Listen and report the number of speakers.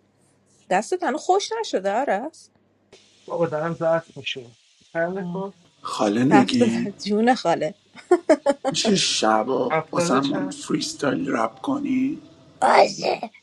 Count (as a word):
three